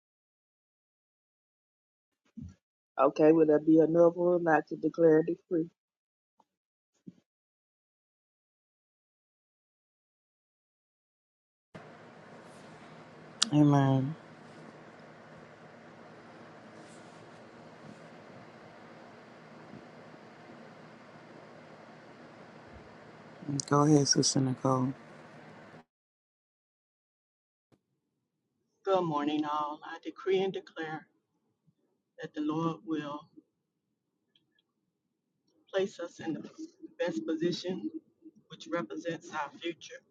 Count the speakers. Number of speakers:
3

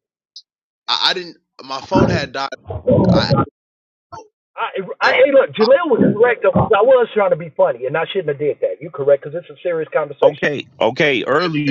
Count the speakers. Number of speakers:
3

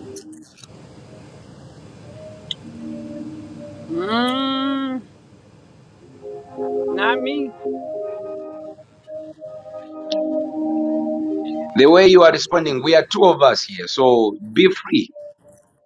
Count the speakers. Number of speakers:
2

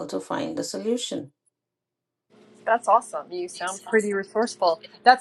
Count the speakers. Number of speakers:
2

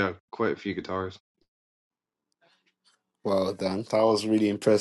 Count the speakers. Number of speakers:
2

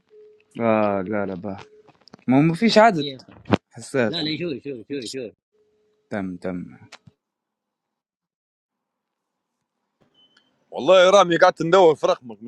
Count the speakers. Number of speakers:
3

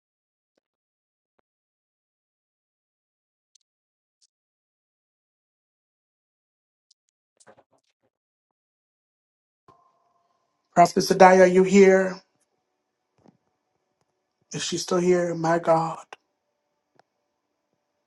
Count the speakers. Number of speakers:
1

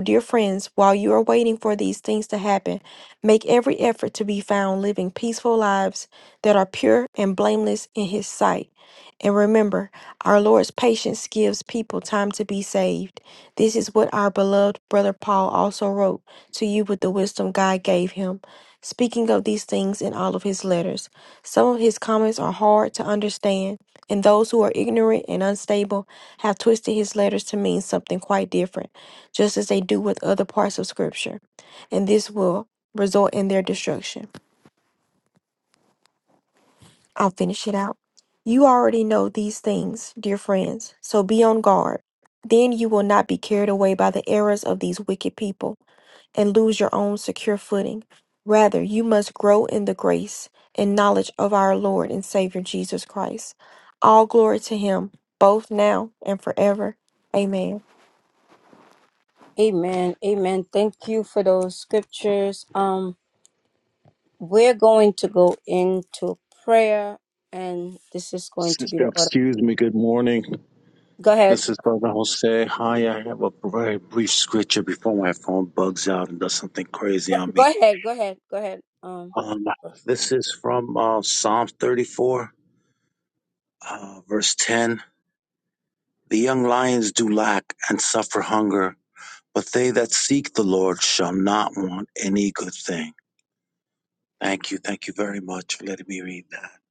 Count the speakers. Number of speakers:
3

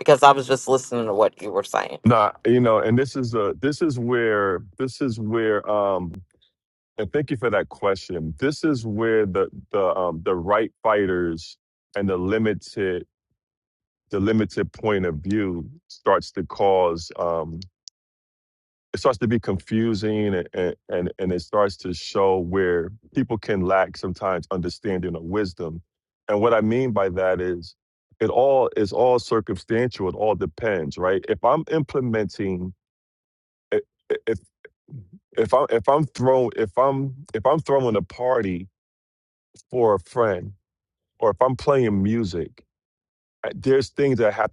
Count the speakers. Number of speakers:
2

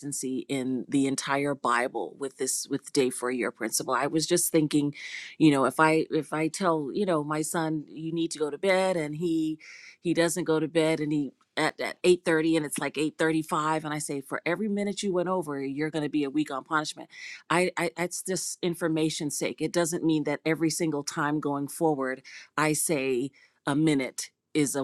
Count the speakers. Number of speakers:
1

